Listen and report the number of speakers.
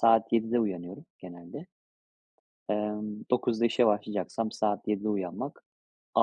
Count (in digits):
1